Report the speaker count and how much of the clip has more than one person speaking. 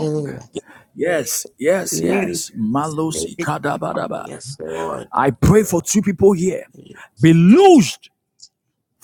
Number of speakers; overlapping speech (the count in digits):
2, about 13%